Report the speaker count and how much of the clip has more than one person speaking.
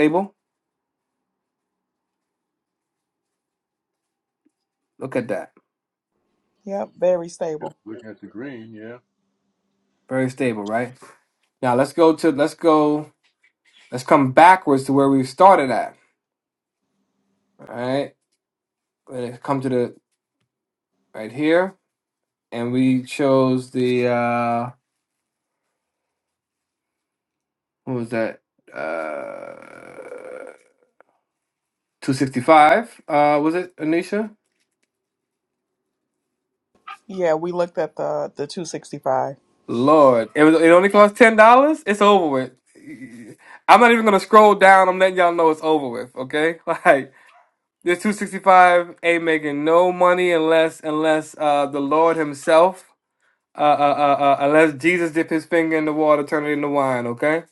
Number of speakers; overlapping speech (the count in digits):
3, no overlap